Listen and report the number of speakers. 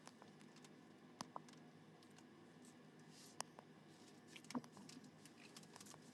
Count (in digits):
0